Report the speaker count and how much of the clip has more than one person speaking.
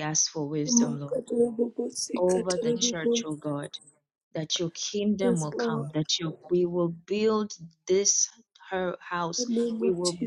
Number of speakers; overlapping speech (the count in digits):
2, about 26%